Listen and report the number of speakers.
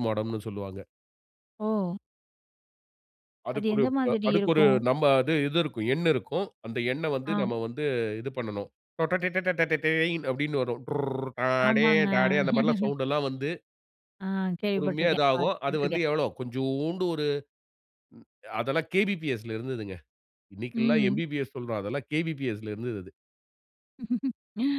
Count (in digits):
2